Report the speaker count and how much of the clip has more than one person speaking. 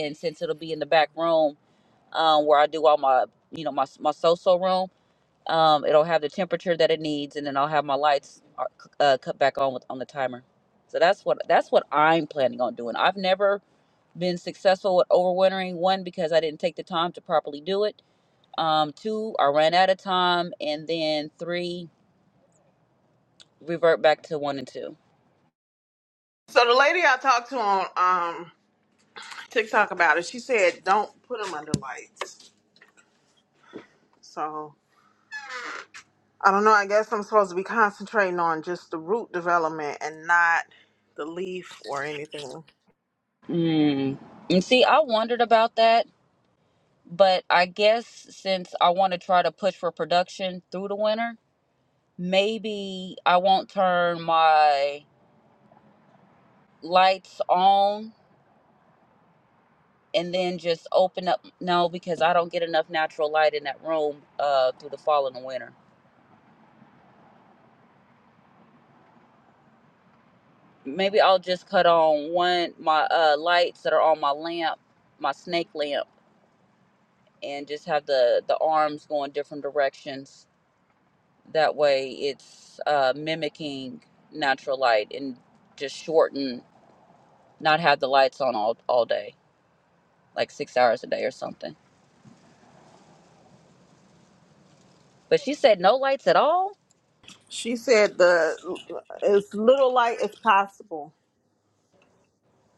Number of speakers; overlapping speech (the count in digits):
2, no overlap